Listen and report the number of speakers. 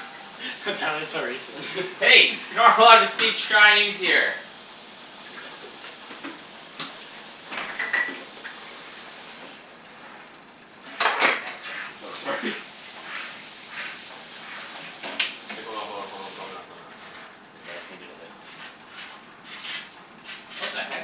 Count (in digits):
3